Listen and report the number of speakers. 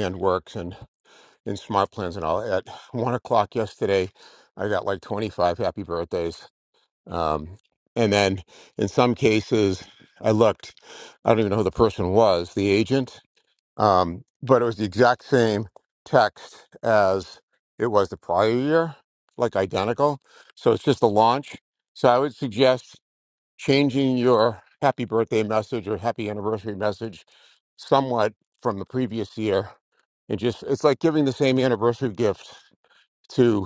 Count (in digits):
1